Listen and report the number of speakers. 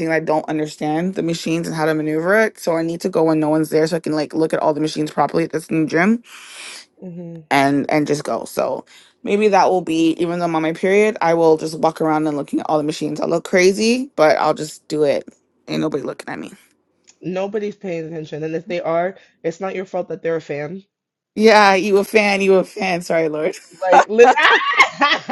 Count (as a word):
two